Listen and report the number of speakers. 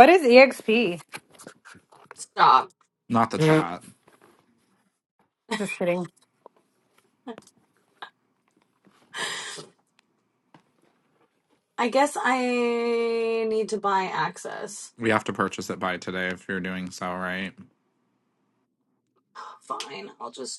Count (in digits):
3